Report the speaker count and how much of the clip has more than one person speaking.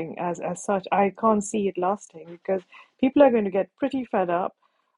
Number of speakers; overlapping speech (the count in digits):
1, no overlap